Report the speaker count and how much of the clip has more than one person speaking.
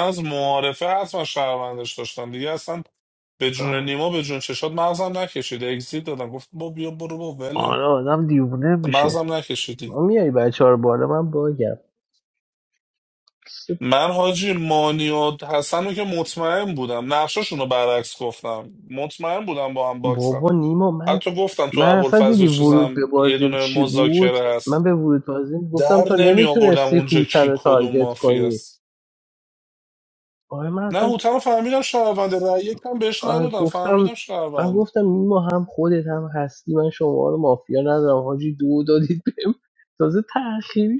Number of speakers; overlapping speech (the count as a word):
two, about 19%